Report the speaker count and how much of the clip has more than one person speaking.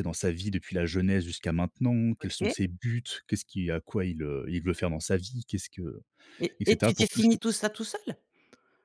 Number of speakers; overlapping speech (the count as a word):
two, about 13%